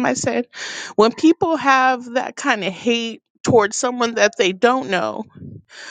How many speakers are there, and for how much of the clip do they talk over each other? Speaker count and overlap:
one, no overlap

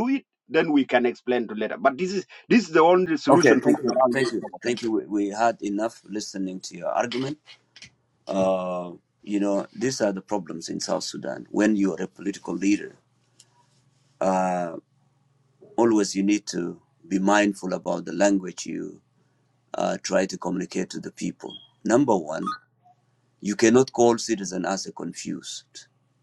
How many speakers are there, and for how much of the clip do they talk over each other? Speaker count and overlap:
two, about 5%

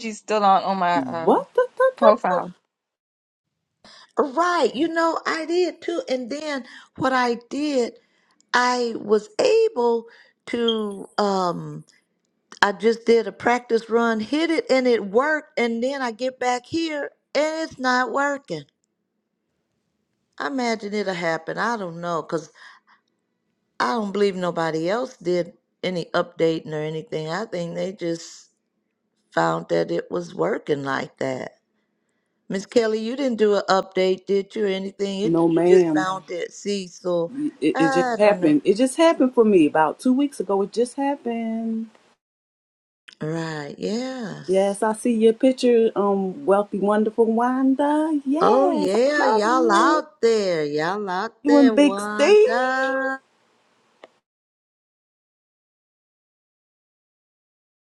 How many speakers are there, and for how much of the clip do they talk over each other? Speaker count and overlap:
three, about 8%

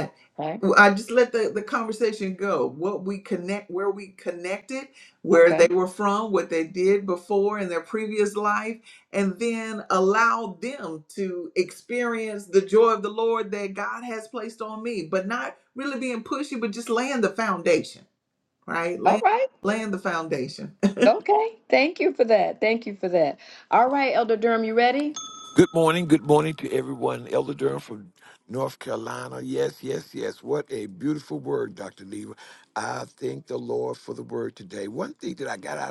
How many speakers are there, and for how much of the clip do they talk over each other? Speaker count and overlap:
three, about 2%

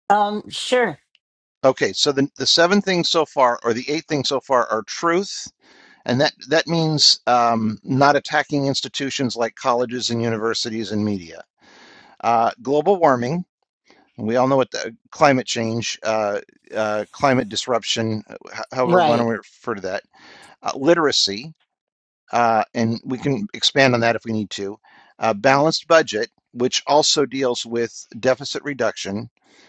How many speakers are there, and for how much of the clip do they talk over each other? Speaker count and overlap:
two, about 1%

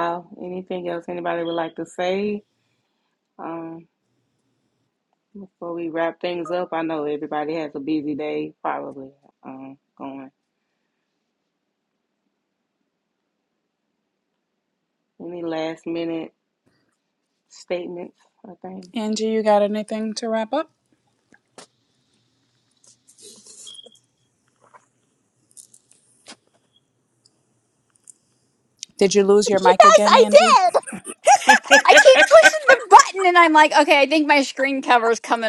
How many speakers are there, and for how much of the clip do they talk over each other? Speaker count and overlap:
three, about 3%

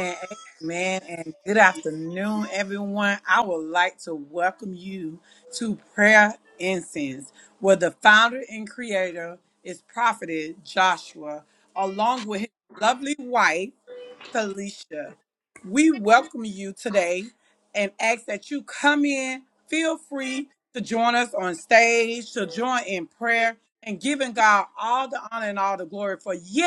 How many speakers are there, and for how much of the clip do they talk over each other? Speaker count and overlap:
one, no overlap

